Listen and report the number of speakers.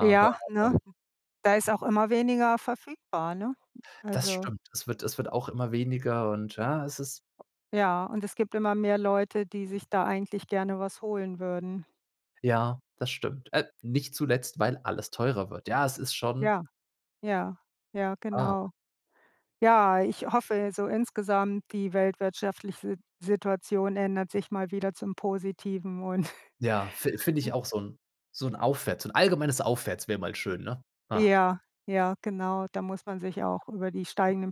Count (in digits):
2